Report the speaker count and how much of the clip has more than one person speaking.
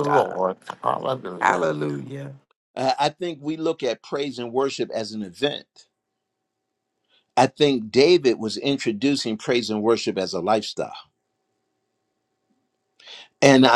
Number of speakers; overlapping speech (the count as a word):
three, about 5%